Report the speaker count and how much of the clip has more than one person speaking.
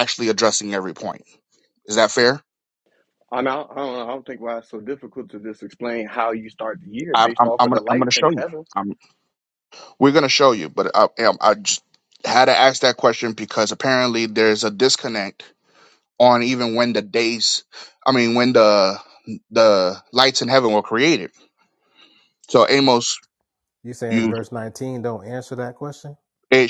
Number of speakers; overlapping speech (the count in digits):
3, about 6%